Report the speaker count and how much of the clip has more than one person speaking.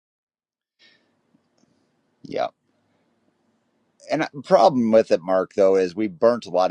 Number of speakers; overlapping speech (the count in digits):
1, no overlap